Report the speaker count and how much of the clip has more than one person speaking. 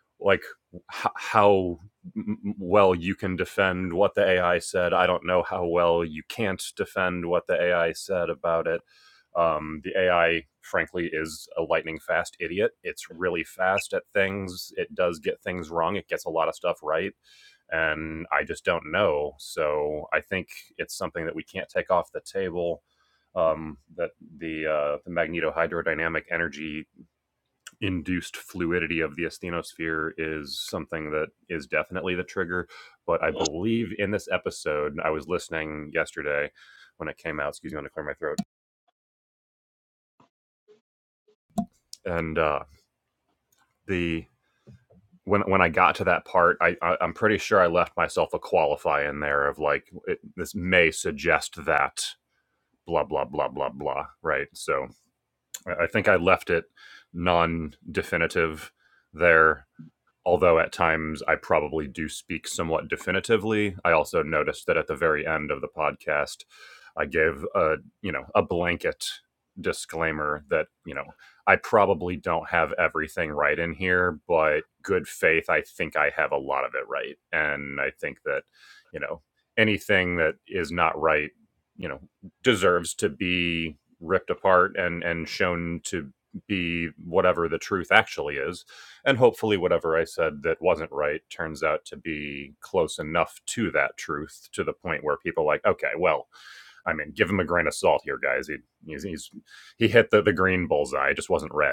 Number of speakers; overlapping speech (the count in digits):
1, no overlap